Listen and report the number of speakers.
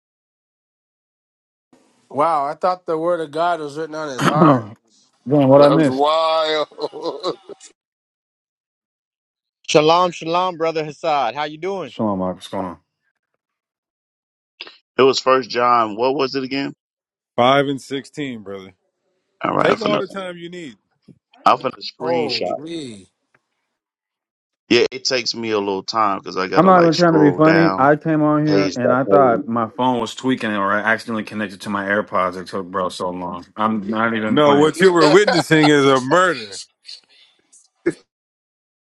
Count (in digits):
6